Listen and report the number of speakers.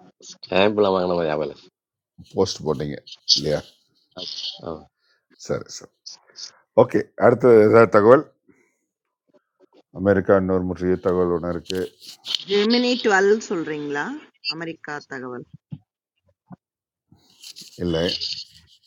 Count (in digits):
3